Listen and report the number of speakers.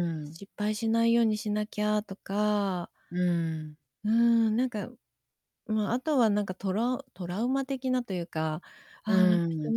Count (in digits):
2